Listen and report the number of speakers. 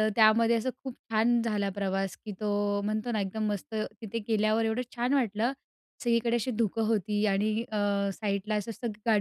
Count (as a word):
one